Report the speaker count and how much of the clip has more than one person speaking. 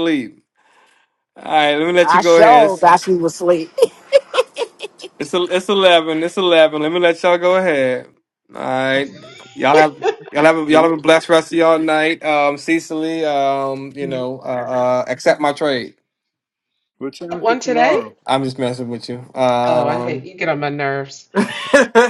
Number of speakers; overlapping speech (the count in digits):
4, about 11%